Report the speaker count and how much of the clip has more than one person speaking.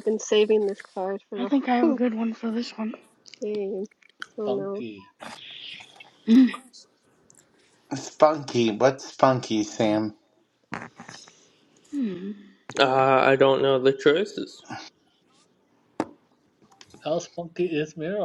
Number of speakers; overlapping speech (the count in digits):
5, about 5%